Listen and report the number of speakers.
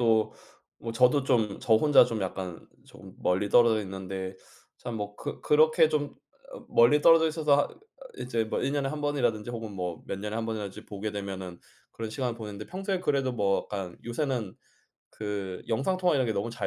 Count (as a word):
one